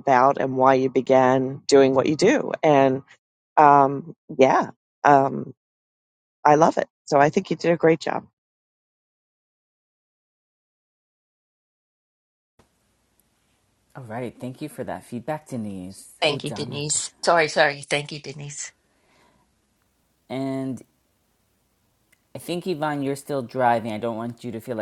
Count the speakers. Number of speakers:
3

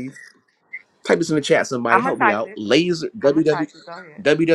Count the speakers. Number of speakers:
2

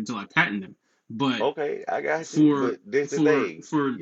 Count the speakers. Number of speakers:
2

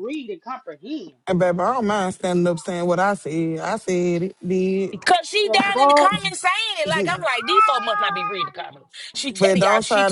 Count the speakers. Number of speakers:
3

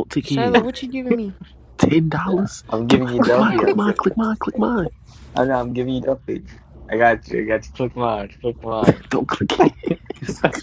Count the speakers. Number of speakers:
3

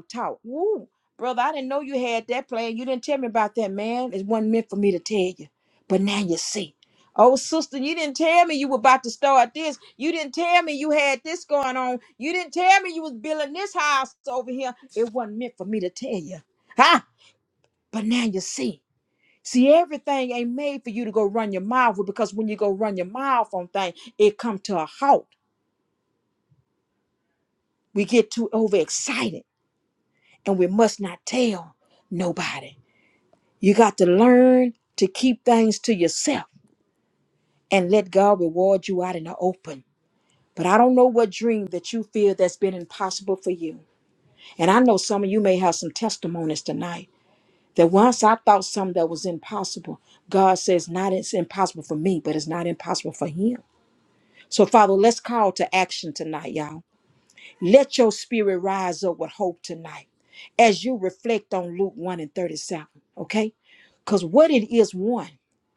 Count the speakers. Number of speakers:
1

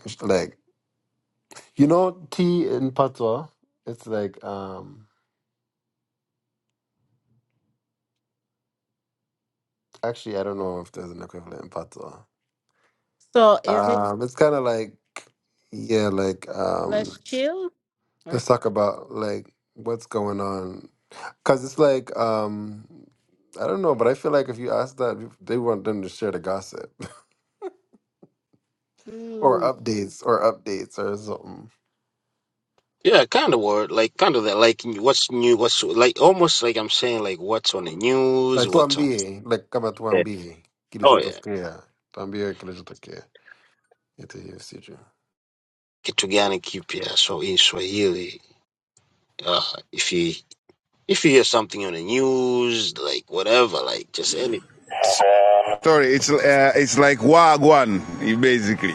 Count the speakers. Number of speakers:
4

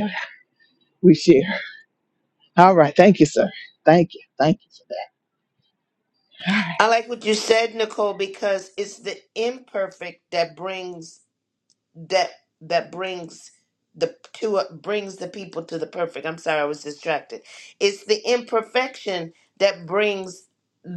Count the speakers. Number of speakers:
2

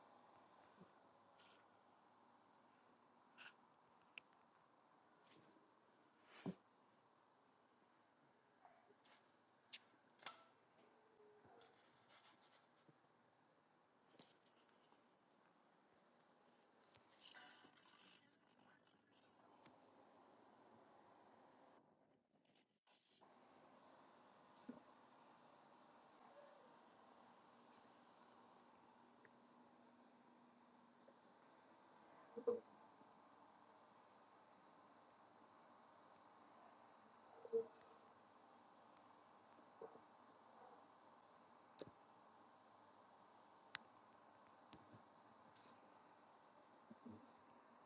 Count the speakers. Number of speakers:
0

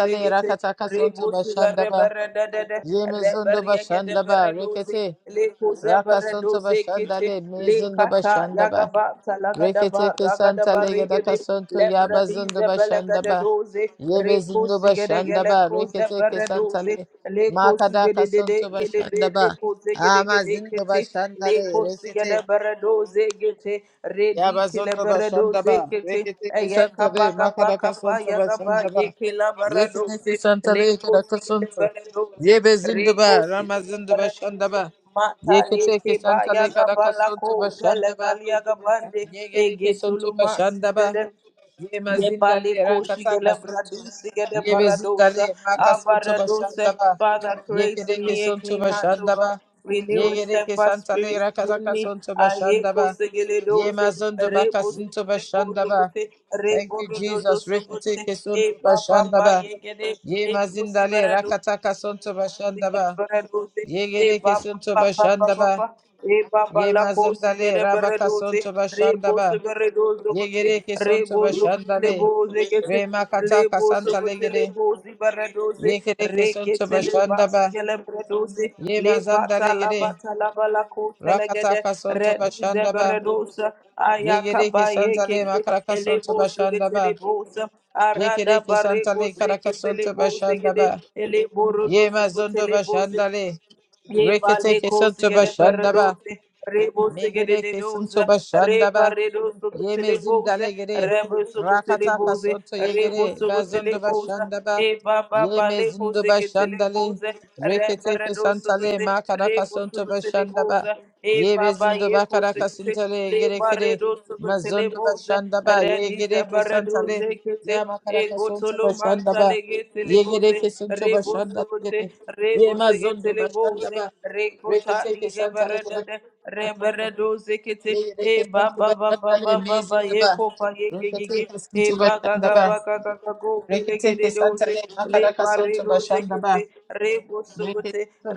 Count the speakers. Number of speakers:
2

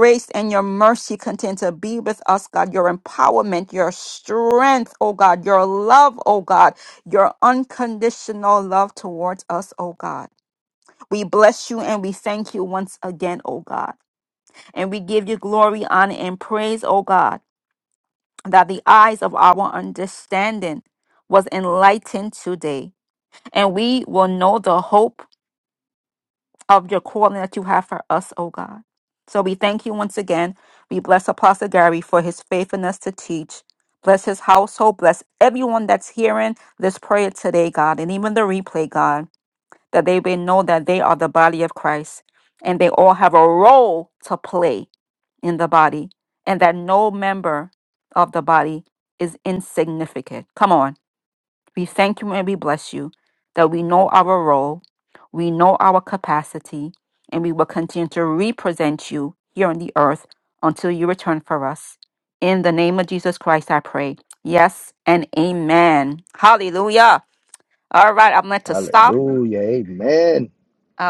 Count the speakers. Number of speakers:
2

